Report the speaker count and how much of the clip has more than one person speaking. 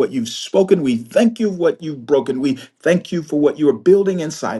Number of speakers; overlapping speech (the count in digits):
1, no overlap